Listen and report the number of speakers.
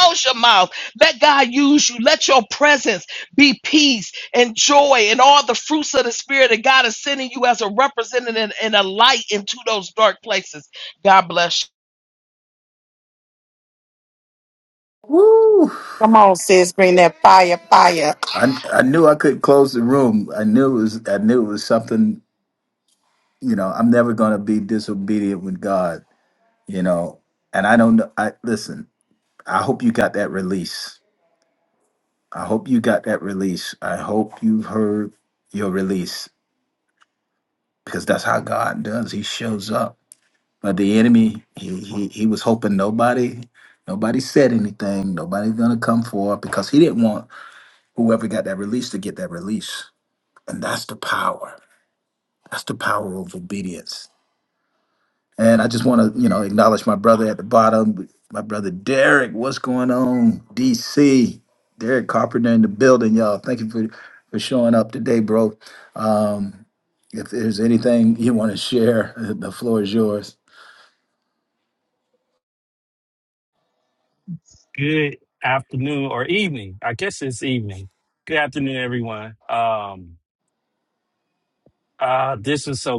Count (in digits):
4